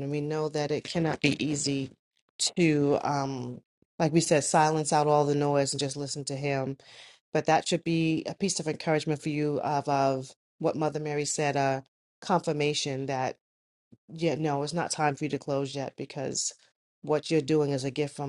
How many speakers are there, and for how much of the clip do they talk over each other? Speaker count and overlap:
1, no overlap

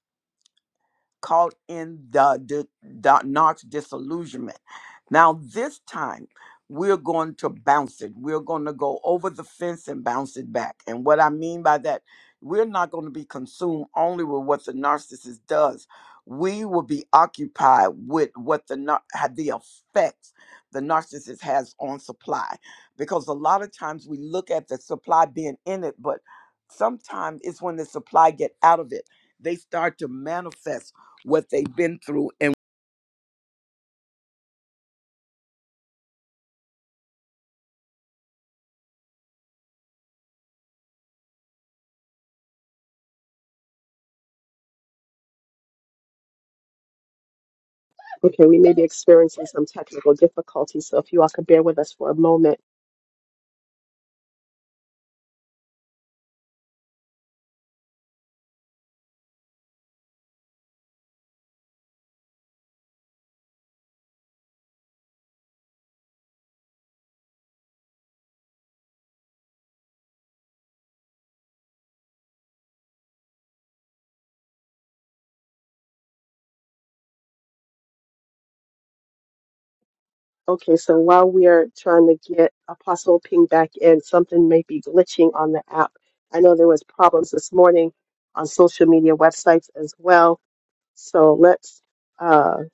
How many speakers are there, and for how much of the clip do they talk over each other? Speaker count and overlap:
2, no overlap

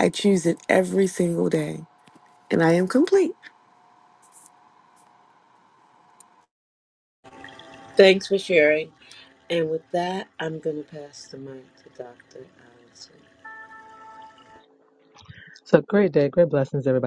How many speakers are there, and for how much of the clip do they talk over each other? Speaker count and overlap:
3, no overlap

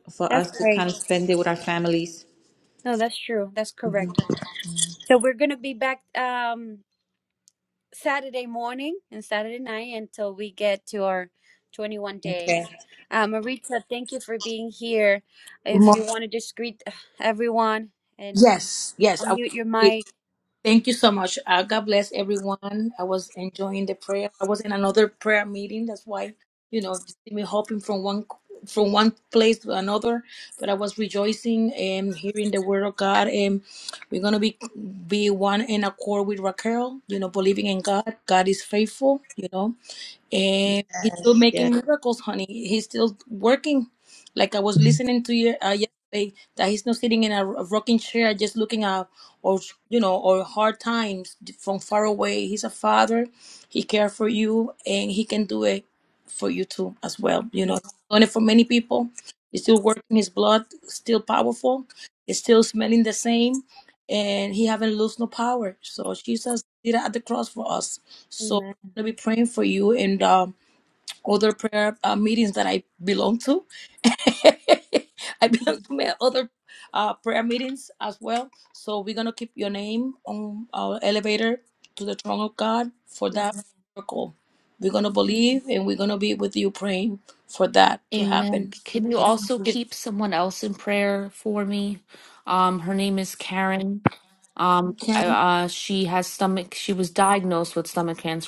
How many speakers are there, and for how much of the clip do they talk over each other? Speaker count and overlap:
4, about 3%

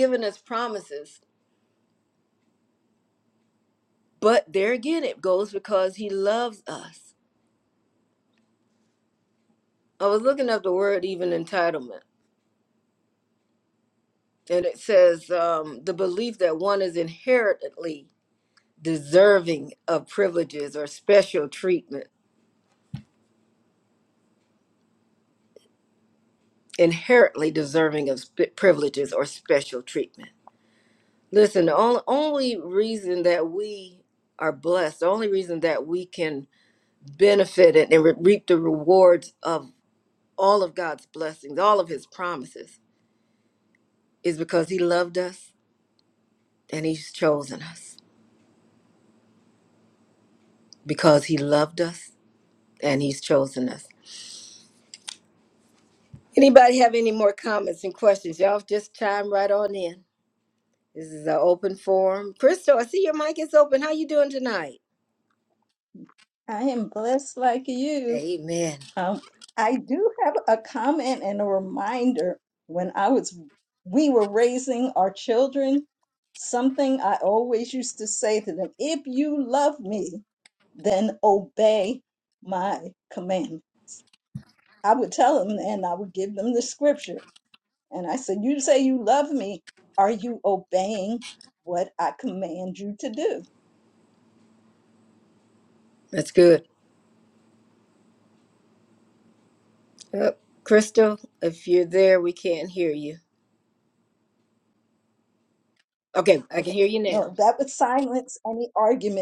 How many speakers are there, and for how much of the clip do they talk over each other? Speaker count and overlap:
2, under 1%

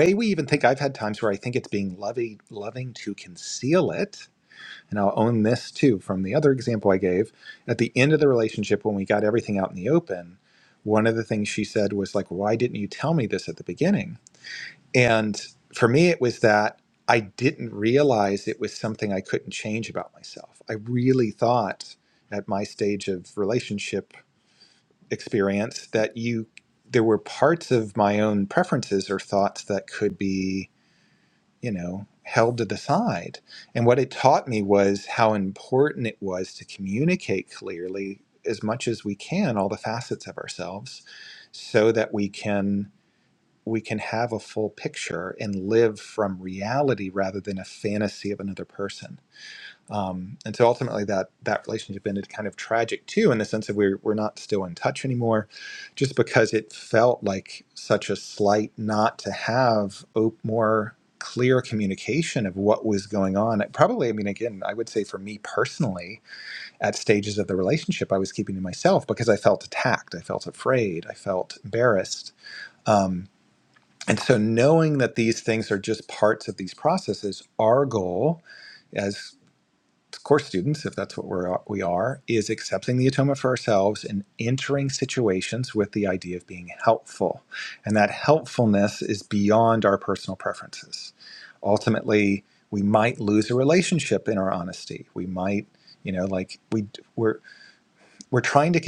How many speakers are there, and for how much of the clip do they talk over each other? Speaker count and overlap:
1, no overlap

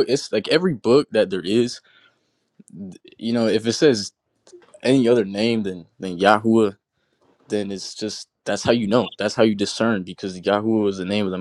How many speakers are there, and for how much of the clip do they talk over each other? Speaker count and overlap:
1, no overlap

